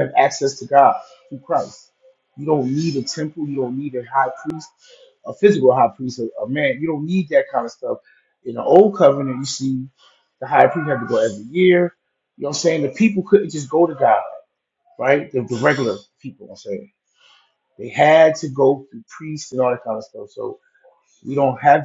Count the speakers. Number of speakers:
1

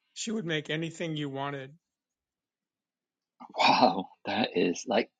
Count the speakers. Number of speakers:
2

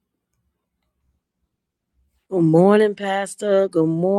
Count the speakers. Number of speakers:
1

